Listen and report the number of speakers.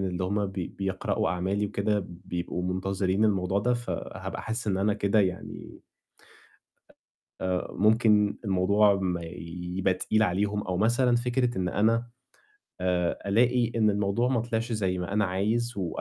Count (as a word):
one